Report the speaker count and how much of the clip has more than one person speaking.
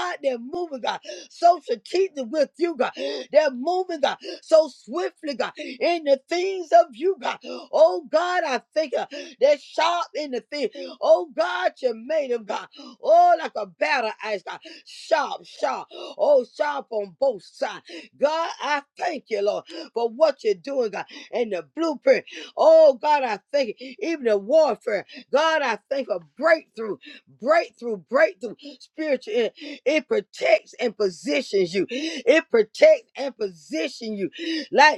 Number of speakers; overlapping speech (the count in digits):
1, no overlap